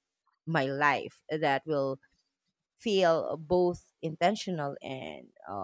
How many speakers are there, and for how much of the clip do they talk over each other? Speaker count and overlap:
1, no overlap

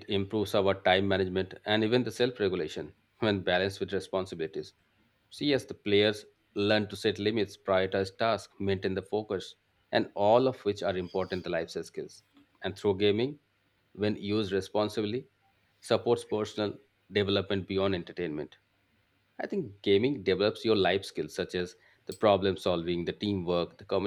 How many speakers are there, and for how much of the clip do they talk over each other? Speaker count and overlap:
1, no overlap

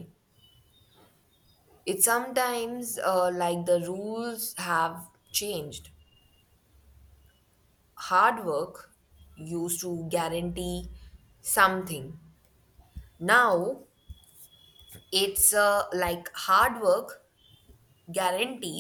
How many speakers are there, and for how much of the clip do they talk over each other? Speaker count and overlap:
1, no overlap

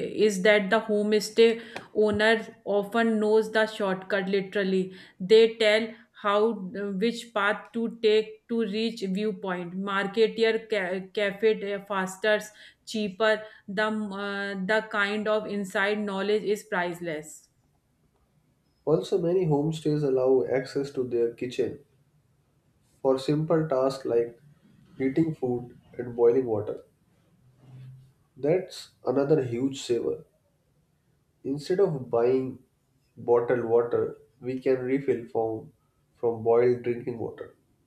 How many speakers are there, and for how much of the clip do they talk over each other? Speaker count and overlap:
2, no overlap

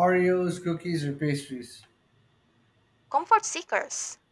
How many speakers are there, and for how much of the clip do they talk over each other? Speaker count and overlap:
2, no overlap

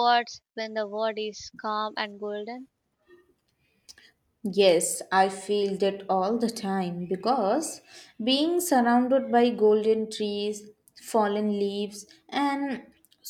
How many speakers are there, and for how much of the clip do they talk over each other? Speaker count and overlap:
2, no overlap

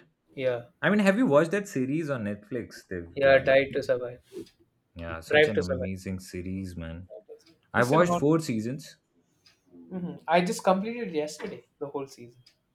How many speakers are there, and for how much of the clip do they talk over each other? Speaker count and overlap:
2, about 11%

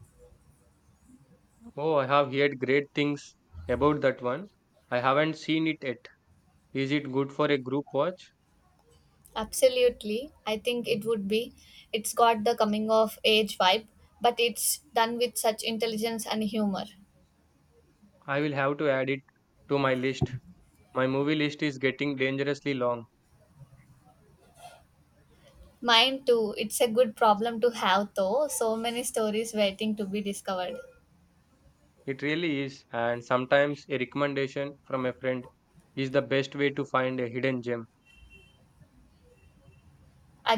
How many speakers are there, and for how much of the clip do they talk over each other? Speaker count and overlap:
2, no overlap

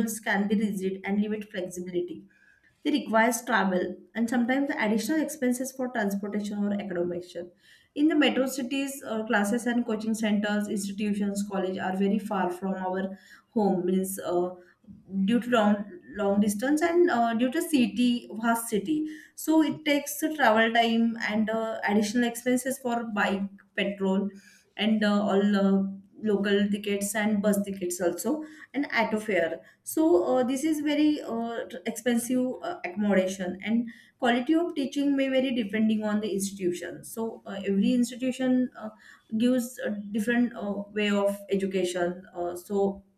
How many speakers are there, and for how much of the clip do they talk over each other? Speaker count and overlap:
1, no overlap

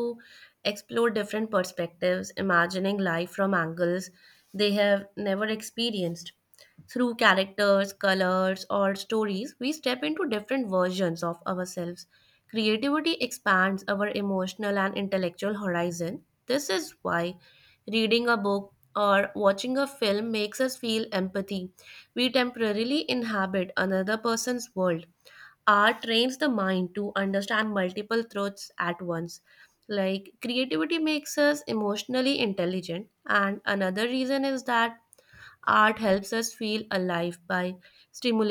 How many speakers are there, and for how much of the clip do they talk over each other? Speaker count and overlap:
1, no overlap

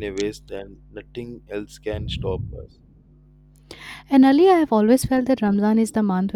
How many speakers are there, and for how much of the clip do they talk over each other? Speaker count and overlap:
2, no overlap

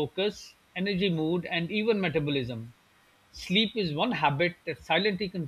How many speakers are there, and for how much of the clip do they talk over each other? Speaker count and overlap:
1, no overlap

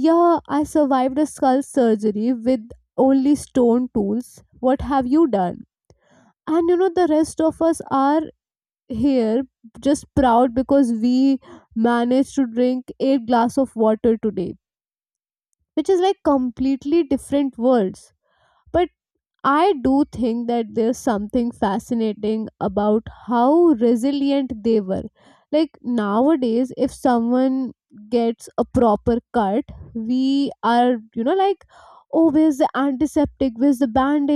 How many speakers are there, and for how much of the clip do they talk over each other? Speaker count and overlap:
1, no overlap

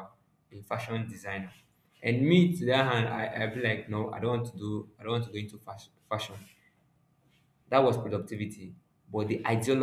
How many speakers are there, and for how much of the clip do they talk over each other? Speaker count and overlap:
1, no overlap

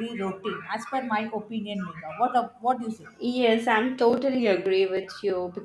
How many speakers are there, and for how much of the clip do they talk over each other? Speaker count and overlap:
2, no overlap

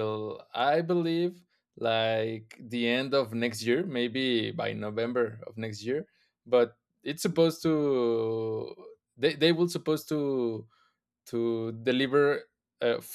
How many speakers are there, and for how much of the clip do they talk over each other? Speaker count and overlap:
1, no overlap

